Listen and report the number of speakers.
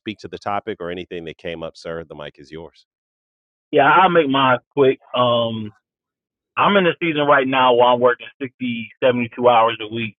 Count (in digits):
2